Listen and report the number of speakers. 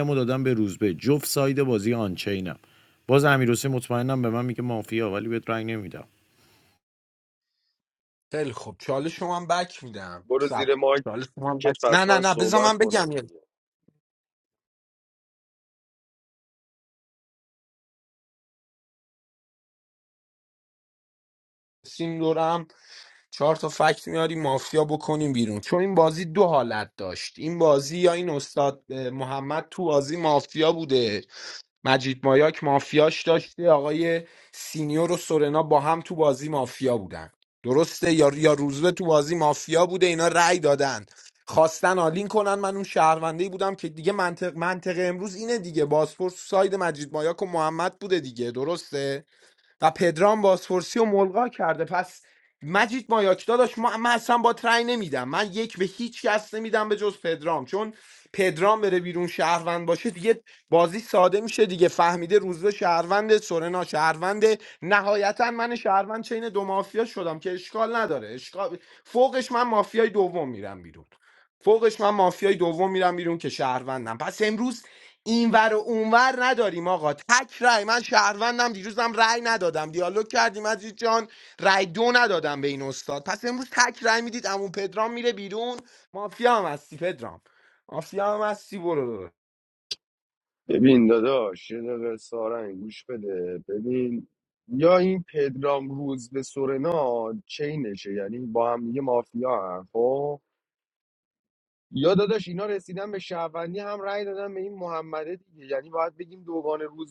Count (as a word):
three